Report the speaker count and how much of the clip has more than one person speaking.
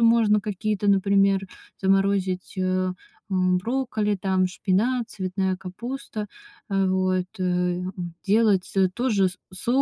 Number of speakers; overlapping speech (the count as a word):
one, no overlap